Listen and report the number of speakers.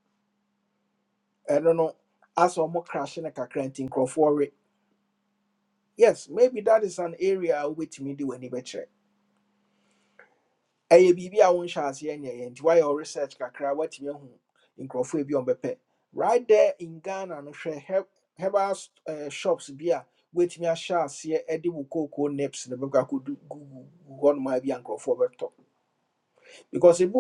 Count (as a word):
one